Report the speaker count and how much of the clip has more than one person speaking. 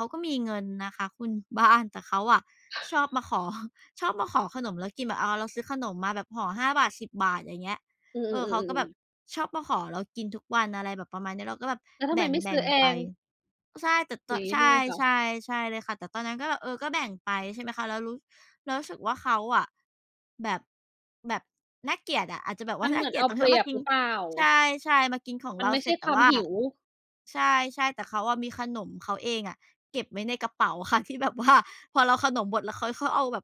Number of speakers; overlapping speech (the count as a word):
two, about 12%